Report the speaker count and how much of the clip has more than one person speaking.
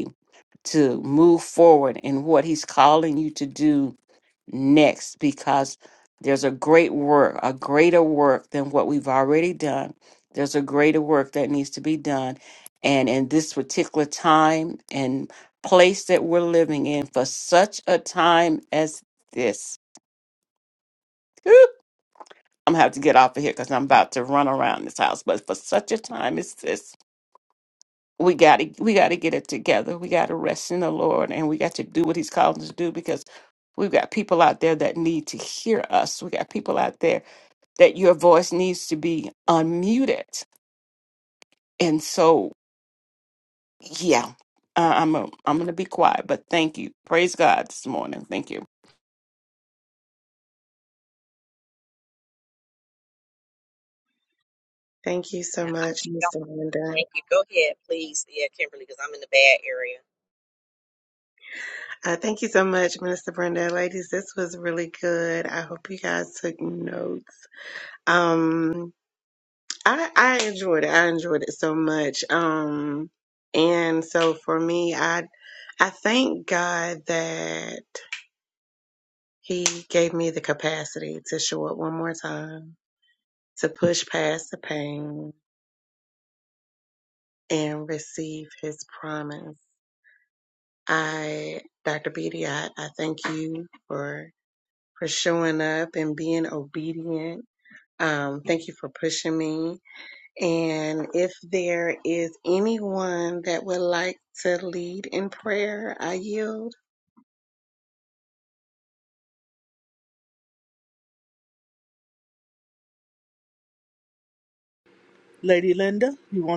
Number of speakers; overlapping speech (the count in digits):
4, under 1%